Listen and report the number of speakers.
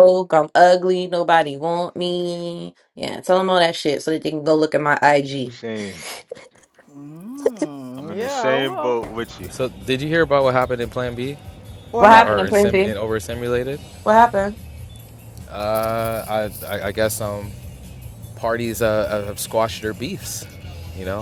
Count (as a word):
four